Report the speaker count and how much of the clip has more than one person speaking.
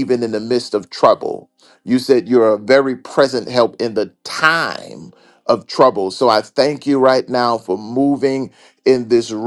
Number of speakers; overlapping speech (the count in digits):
1, no overlap